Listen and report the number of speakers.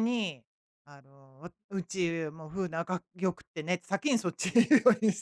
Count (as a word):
one